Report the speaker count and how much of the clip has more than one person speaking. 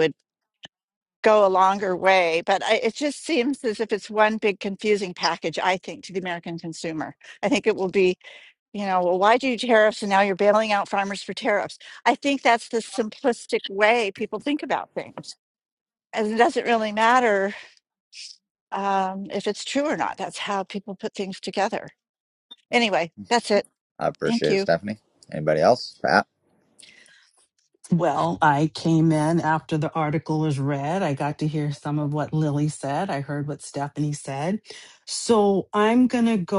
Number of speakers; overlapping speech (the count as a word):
three, about 1%